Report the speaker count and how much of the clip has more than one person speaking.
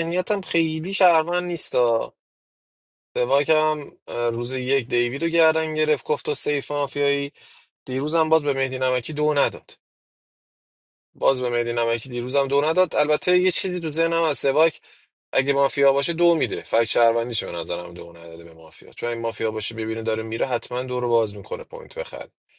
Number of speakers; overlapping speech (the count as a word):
one, no overlap